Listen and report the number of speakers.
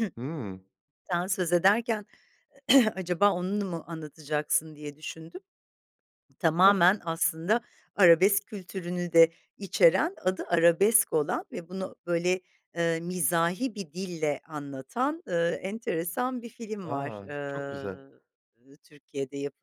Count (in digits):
2